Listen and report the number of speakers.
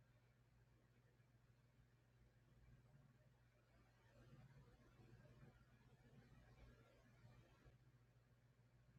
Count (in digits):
0